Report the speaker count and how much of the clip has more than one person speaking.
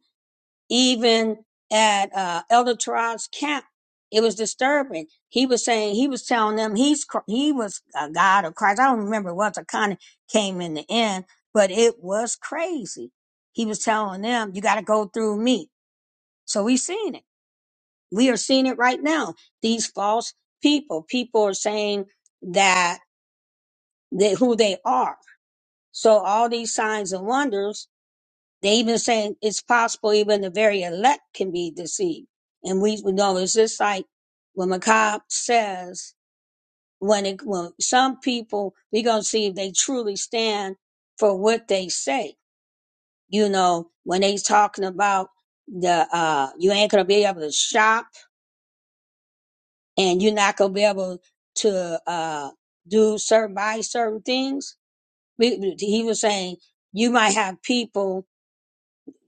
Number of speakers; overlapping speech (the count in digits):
1, no overlap